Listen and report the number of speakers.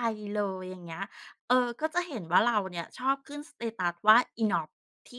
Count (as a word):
one